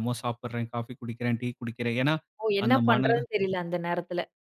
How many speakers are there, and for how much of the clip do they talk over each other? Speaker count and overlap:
2, about 13%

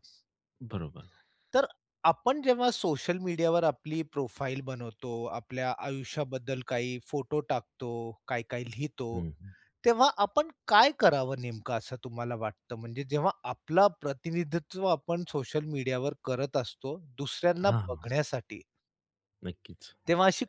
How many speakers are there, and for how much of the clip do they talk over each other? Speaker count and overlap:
2, about 2%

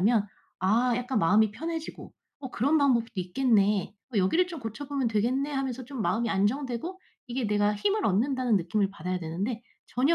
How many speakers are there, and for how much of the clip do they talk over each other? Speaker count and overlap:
1, no overlap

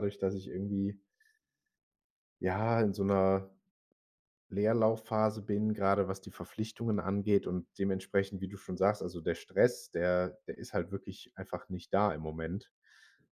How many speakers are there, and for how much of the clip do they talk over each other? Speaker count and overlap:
1, no overlap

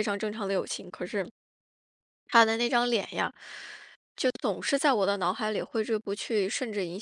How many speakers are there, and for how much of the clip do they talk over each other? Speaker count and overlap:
1, no overlap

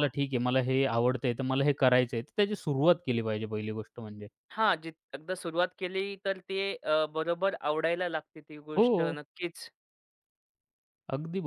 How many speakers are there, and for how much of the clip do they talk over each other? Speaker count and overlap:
2, about 4%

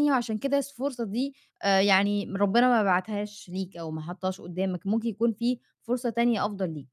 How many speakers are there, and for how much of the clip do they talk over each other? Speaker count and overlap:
1, no overlap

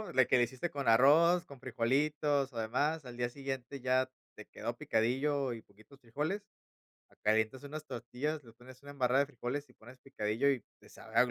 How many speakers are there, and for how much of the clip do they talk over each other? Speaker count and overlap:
1, no overlap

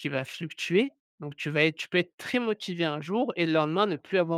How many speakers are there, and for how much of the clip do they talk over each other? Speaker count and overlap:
1, no overlap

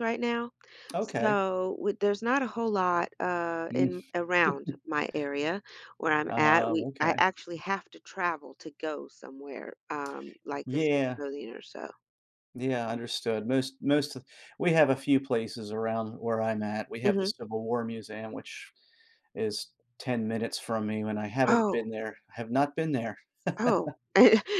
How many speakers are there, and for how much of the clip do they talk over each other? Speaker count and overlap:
2, about 9%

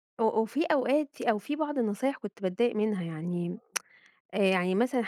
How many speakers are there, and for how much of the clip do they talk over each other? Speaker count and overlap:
1, no overlap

